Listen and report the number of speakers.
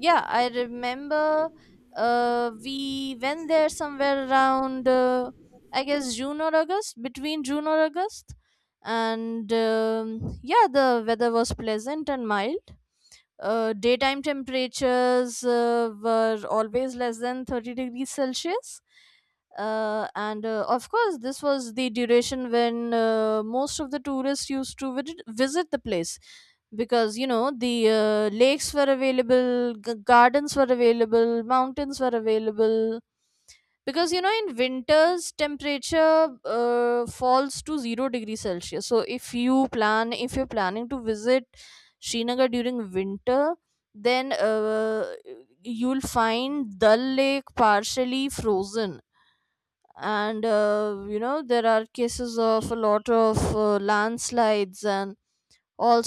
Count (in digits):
1